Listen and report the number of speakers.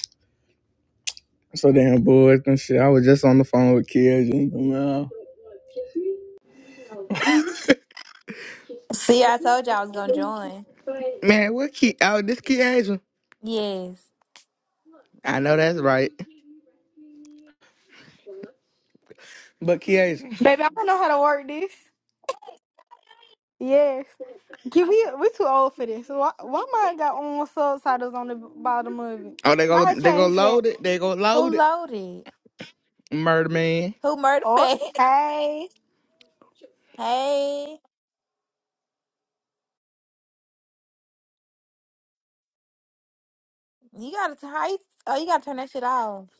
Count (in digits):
3